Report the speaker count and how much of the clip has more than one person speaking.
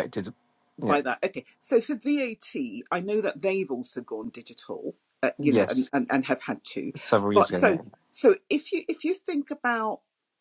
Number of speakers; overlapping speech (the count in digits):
2, about 8%